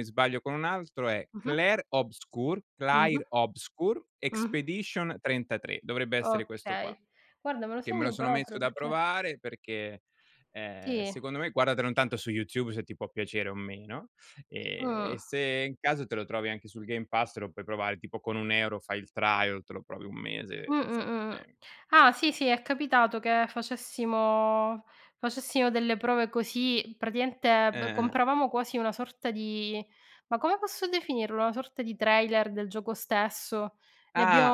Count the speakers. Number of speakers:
2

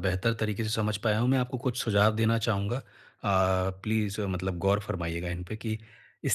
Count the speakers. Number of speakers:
1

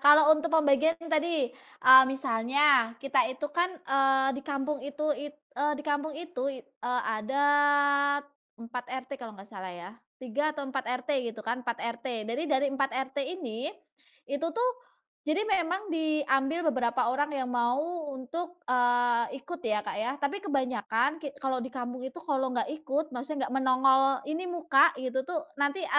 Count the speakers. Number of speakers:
1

